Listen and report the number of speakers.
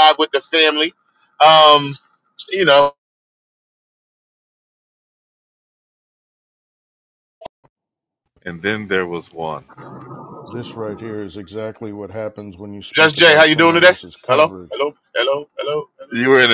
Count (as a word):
three